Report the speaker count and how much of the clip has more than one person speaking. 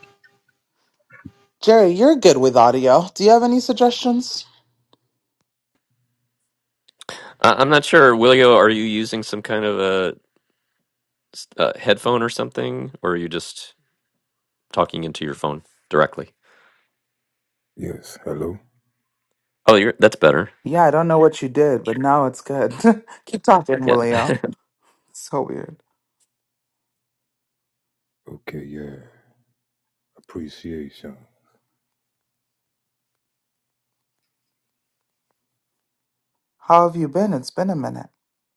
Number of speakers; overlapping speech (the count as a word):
three, under 1%